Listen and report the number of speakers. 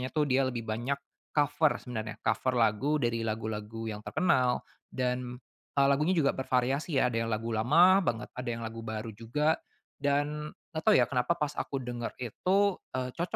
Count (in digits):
1